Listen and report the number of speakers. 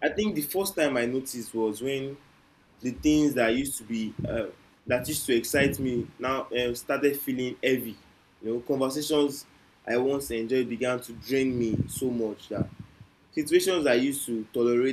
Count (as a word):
one